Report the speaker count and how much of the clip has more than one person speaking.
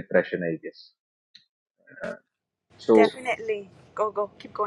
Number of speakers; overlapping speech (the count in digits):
2, about 4%